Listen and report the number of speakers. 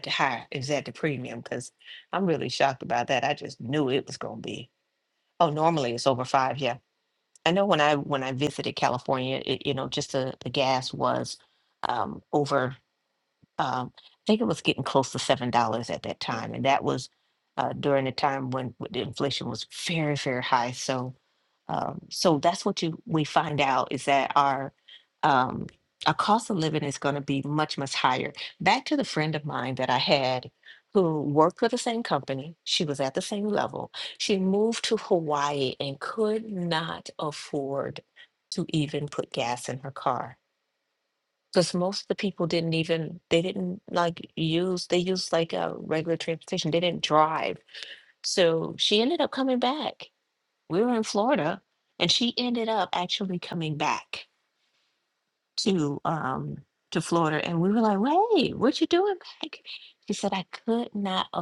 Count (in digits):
1